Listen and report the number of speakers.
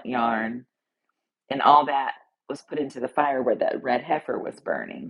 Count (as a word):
one